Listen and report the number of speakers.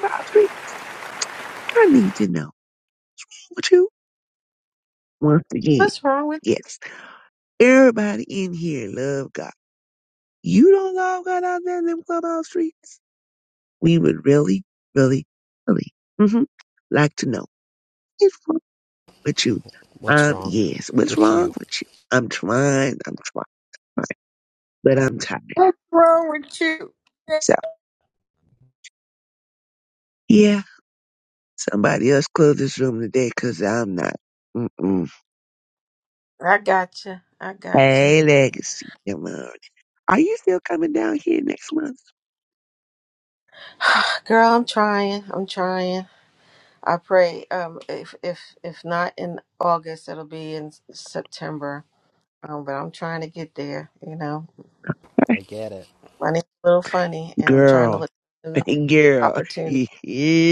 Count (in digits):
4